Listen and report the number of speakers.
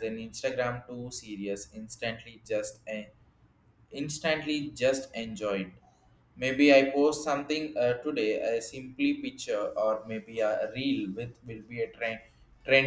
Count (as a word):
one